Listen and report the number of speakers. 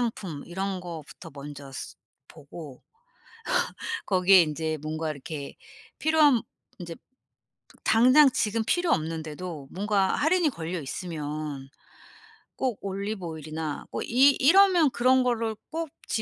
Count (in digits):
1